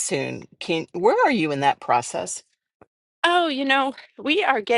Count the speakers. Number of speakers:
2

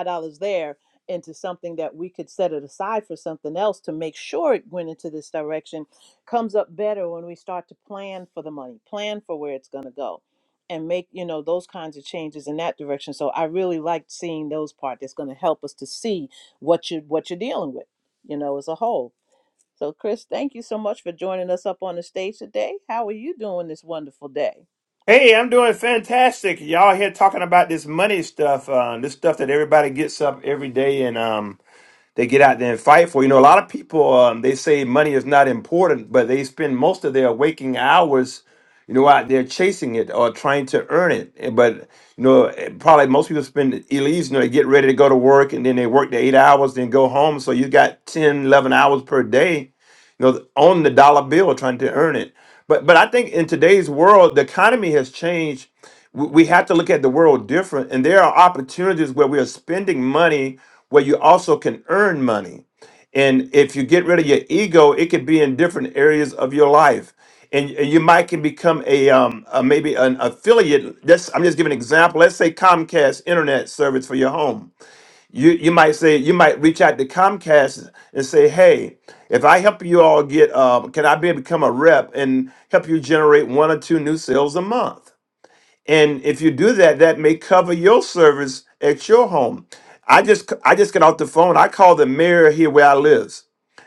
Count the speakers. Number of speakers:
2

